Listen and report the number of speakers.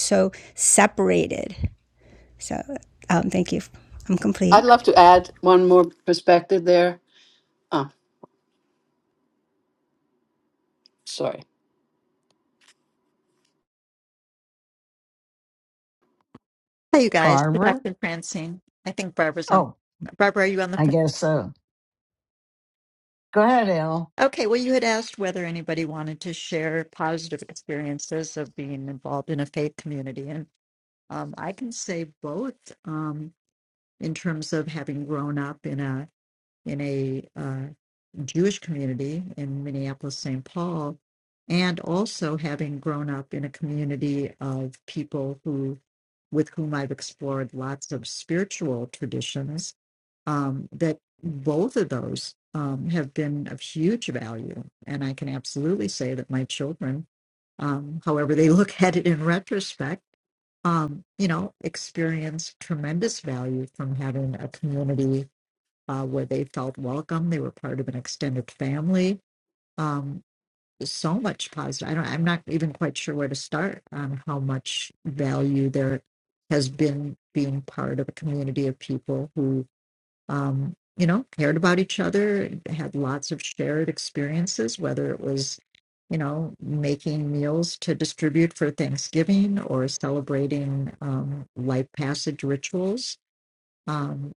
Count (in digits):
4